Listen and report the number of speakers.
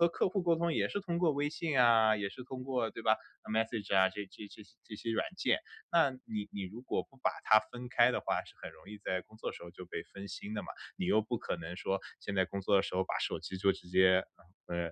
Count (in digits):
1